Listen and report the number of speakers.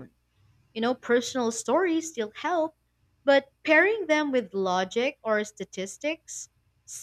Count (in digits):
1